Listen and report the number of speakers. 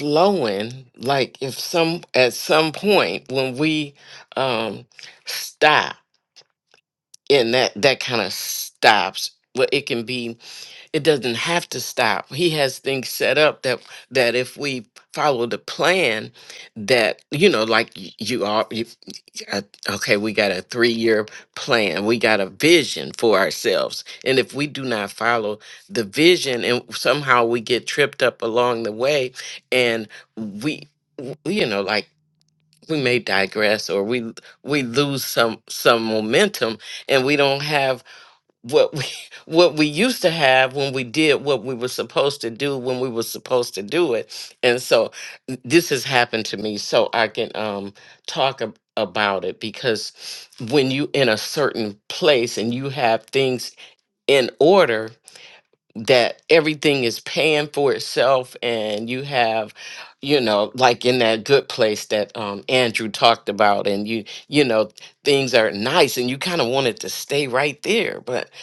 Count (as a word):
one